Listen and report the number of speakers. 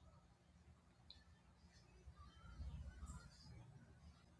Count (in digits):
0